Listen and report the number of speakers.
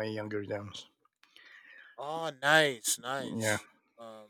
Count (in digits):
2